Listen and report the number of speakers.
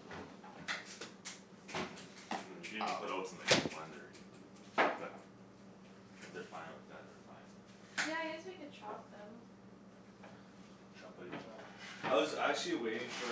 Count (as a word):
three